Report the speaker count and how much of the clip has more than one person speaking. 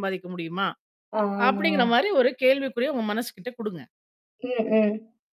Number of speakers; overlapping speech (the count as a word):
two, about 9%